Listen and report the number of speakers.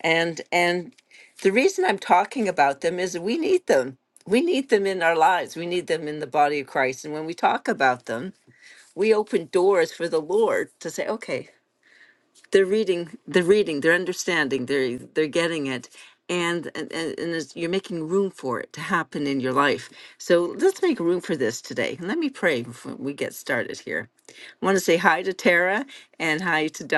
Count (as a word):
one